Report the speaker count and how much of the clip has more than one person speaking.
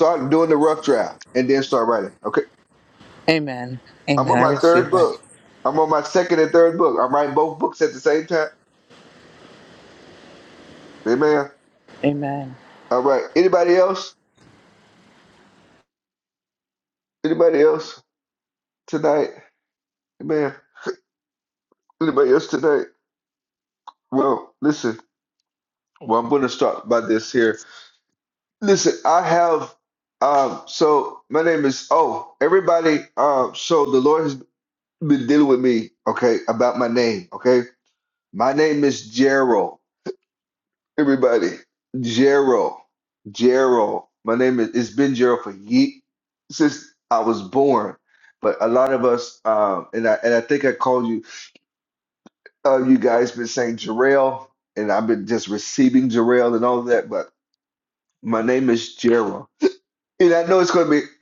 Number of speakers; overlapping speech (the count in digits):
2, about 2%